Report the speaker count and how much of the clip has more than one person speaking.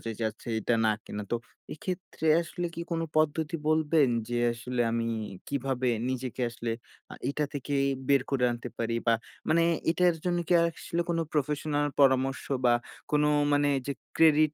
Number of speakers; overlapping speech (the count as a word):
one, no overlap